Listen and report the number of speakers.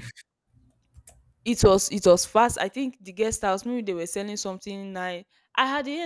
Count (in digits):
1